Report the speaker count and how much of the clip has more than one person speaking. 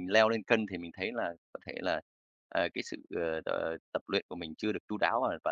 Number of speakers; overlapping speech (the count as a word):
one, no overlap